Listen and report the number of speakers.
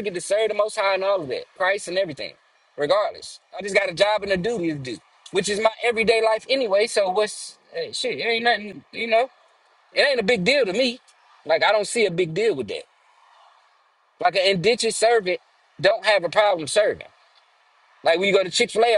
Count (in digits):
1